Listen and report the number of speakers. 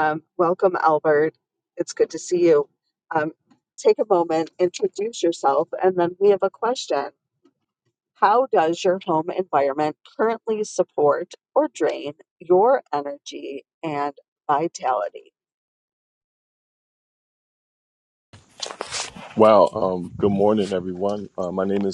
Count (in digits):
2